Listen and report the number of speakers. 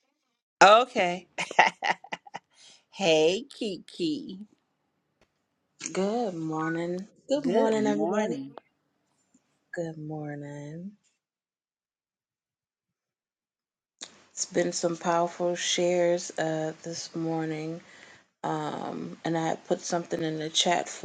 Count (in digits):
2